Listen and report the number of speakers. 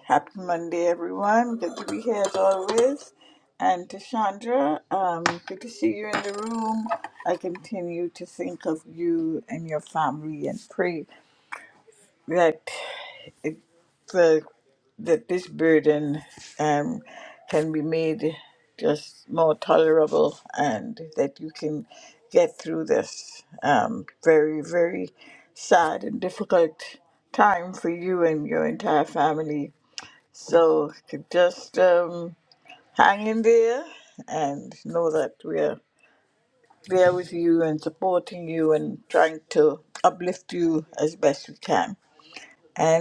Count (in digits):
1